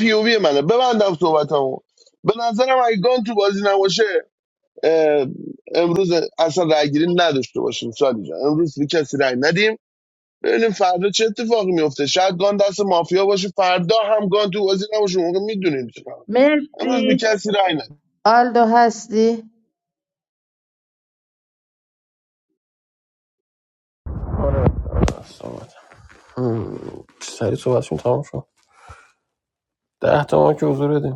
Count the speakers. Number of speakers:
three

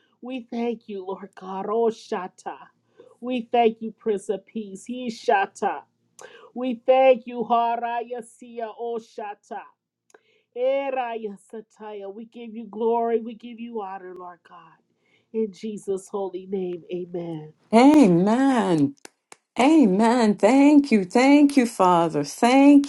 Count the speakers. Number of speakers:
two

